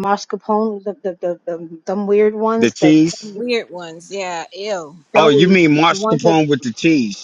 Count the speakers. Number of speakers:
3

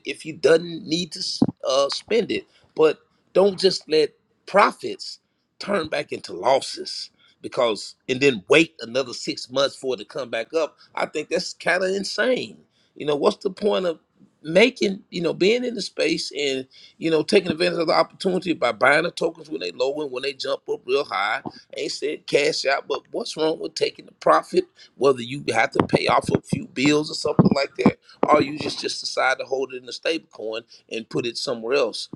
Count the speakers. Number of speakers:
1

